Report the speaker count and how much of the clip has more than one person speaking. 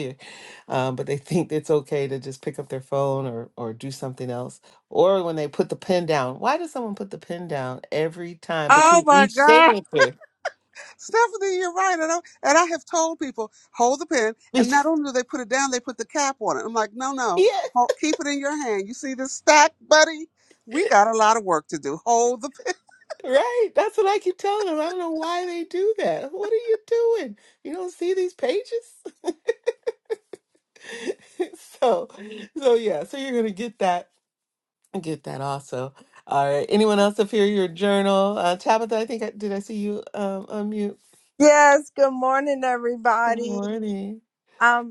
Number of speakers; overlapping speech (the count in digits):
3, about 4%